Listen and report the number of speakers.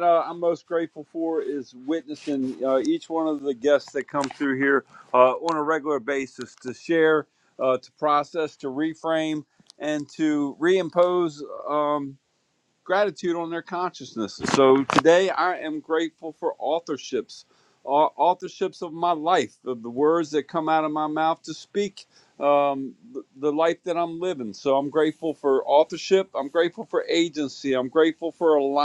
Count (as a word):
one